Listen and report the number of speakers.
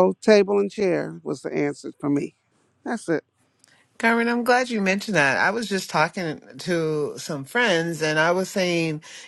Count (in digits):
2